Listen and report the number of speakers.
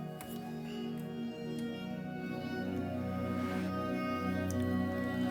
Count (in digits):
0